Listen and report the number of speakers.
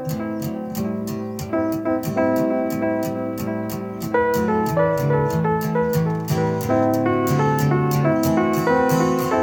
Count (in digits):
0